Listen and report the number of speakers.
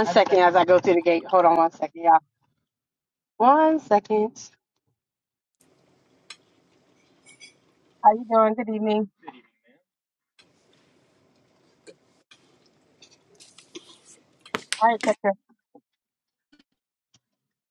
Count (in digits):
1